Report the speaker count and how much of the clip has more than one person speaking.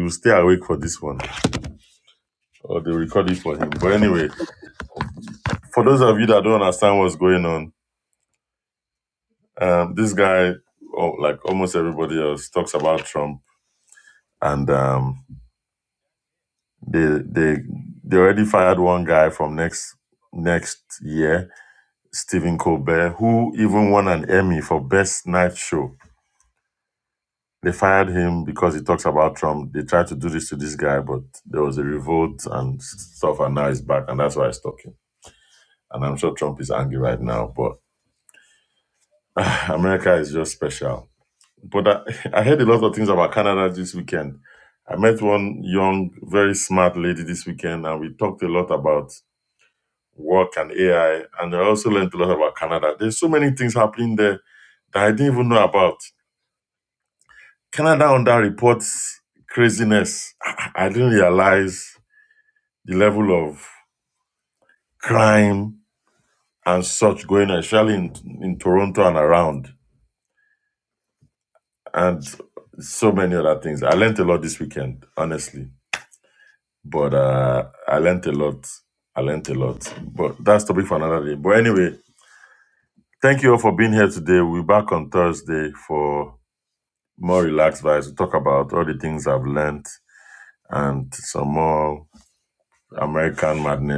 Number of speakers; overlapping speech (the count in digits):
1, no overlap